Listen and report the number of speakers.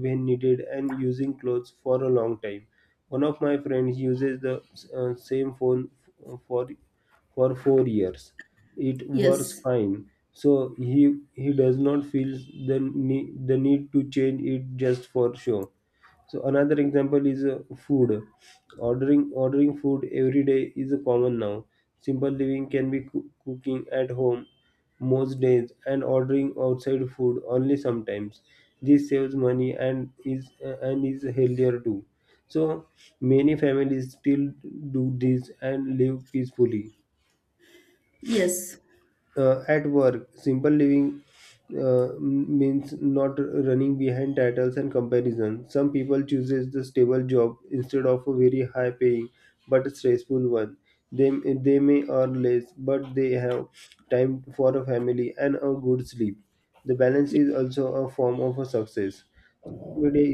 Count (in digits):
2